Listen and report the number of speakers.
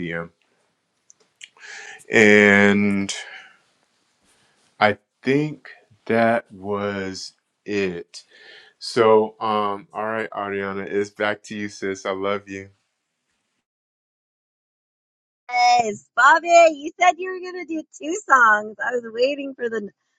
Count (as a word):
two